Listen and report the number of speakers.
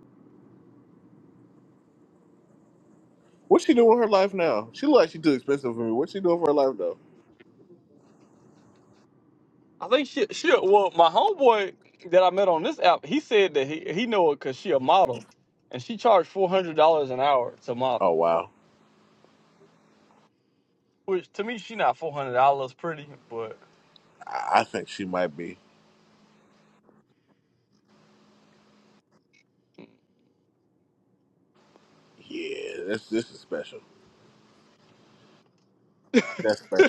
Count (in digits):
2